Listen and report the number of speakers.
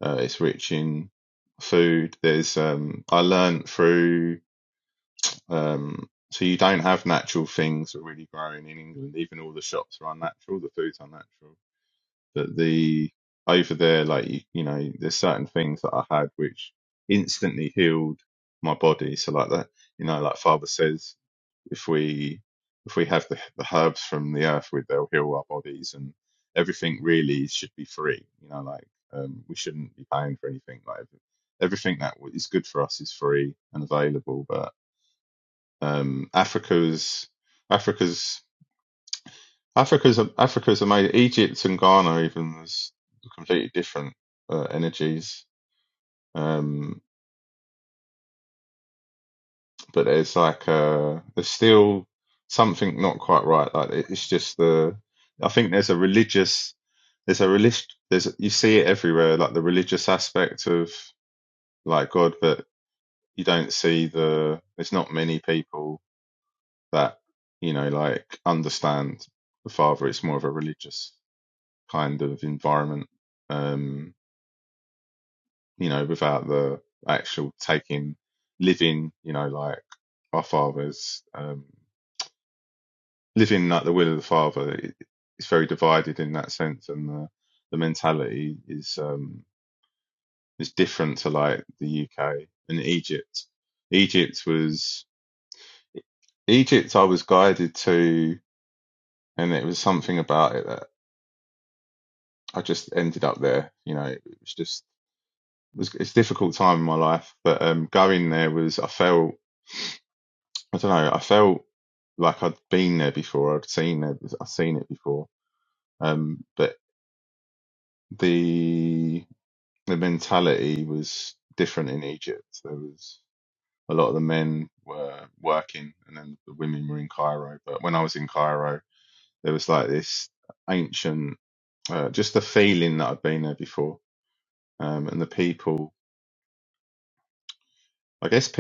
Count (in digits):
1